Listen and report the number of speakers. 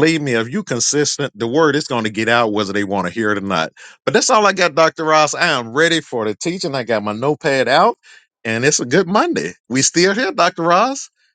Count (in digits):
1